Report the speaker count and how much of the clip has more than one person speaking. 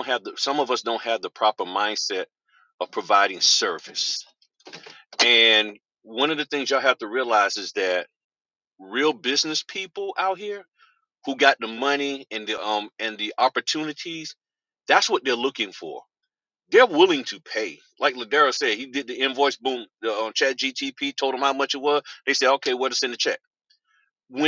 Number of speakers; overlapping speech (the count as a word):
one, no overlap